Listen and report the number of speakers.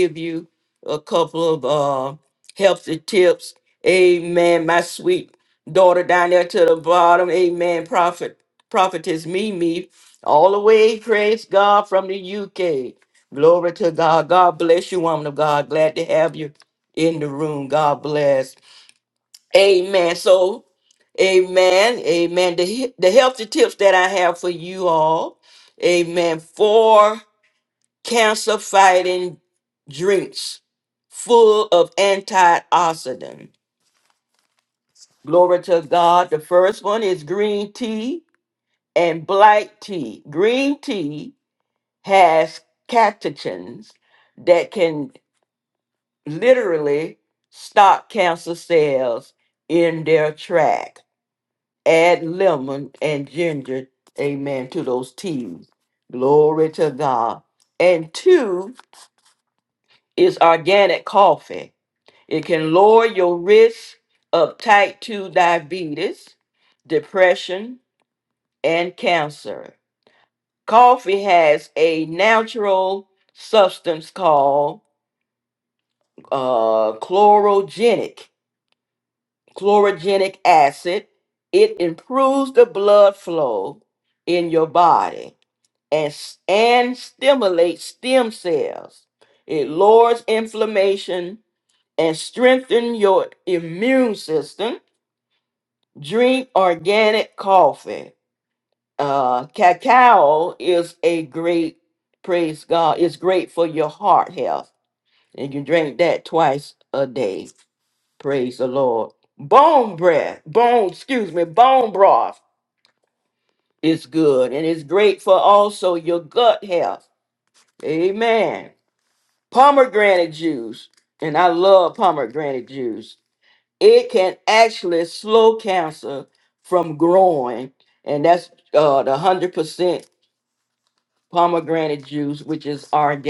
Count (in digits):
1